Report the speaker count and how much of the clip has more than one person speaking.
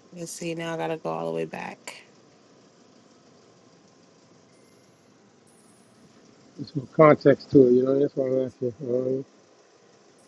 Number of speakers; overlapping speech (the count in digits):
2, no overlap